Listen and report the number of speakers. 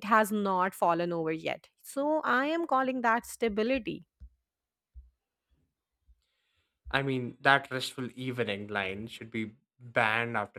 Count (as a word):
two